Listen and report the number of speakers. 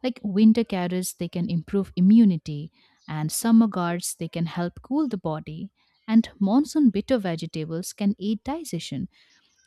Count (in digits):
1